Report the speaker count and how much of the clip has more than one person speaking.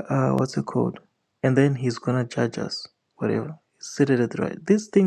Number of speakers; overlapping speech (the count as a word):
one, no overlap